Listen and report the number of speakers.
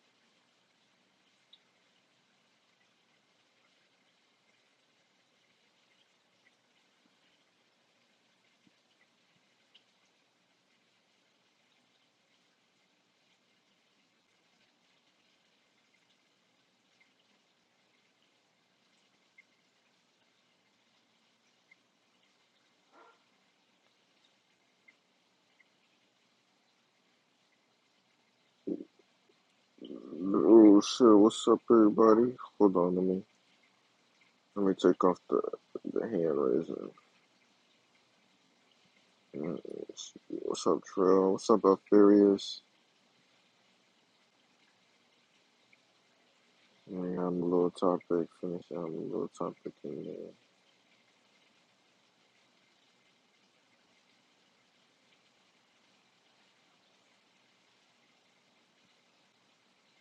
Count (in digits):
1